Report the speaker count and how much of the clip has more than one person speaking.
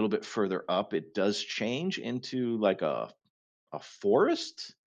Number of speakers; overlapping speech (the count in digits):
1, no overlap